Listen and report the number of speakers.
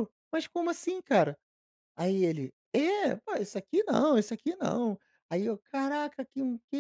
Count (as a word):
one